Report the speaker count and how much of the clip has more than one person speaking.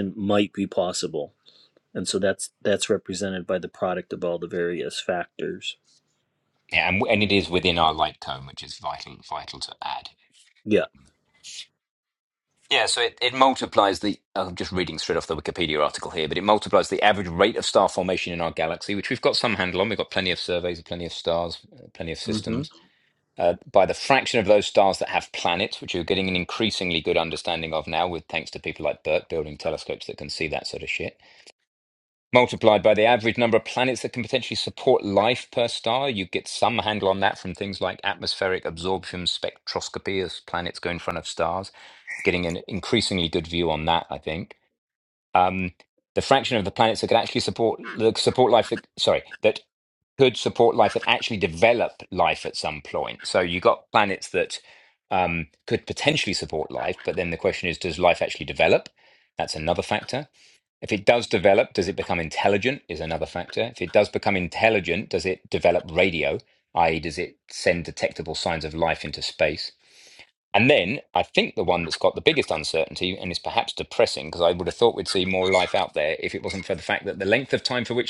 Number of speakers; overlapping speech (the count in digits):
2, under 1%